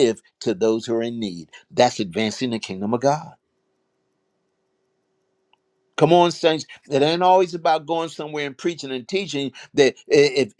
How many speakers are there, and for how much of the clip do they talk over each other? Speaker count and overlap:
1, no overlap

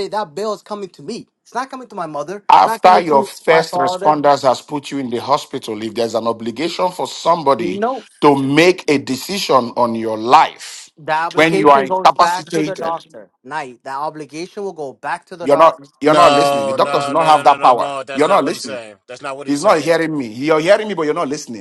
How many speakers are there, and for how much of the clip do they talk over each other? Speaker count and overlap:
3, about 33%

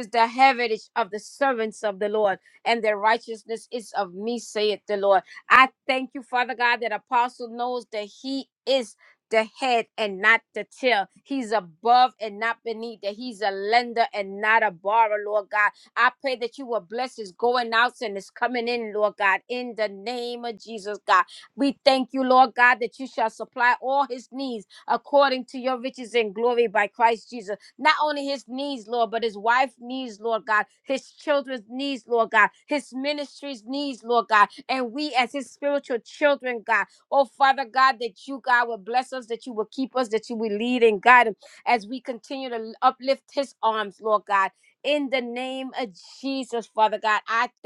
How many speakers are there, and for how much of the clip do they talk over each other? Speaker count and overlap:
1, no overlap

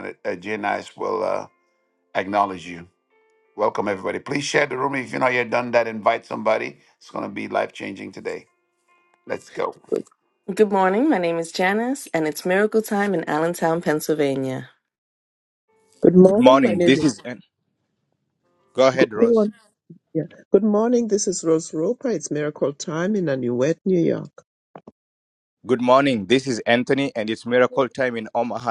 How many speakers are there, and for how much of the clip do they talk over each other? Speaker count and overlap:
4, about 4%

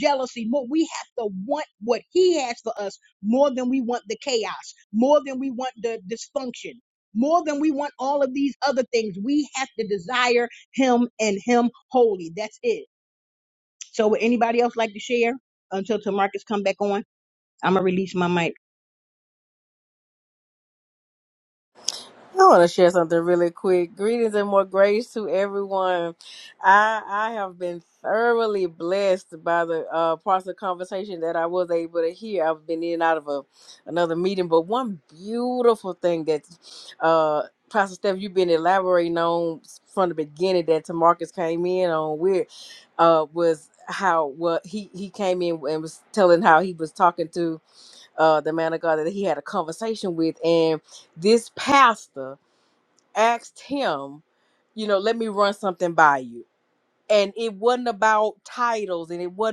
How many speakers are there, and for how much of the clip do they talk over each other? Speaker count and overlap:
2, no overlap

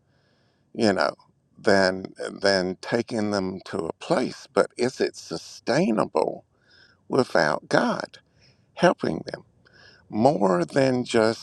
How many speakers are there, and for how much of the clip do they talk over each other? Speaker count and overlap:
1, no overlap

